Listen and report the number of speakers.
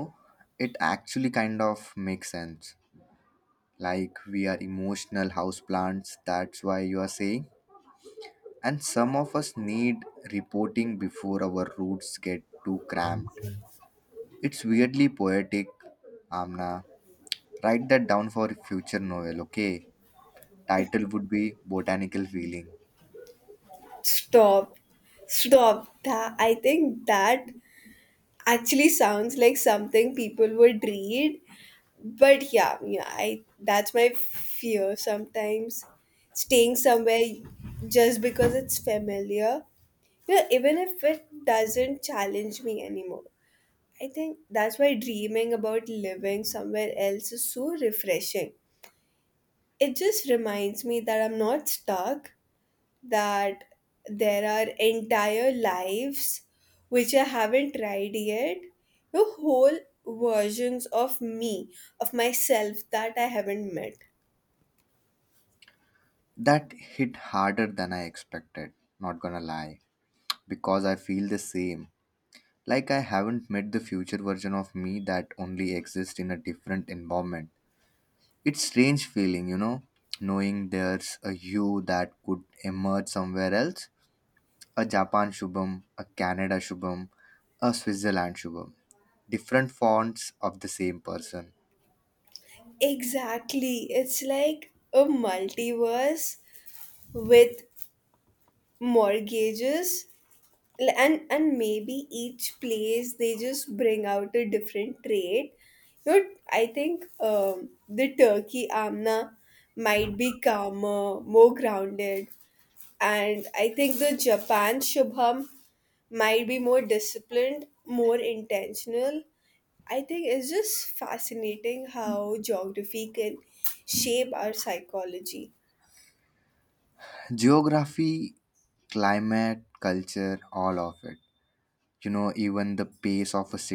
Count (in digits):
2